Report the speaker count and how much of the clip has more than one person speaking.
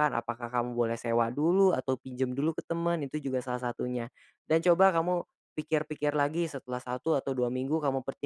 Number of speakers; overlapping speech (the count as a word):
one, no overlap